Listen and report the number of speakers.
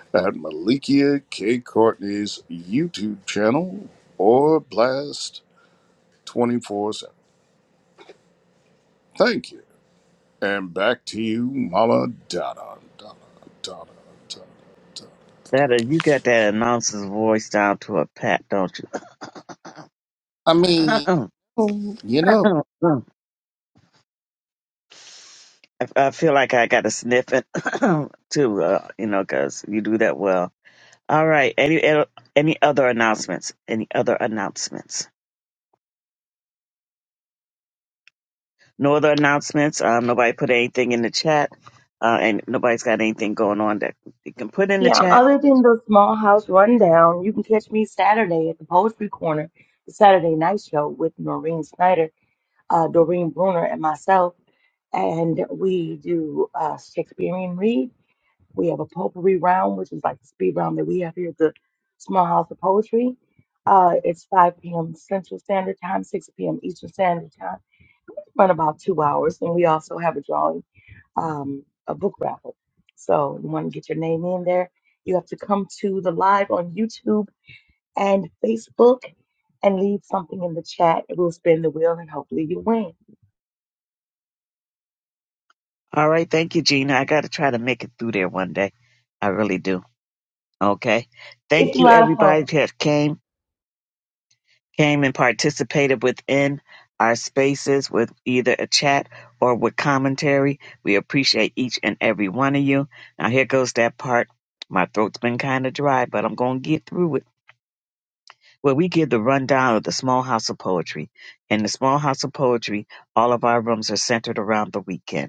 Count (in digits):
3